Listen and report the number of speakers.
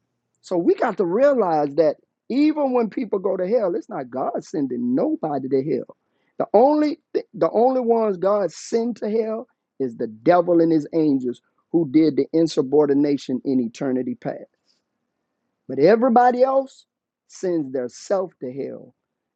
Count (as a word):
one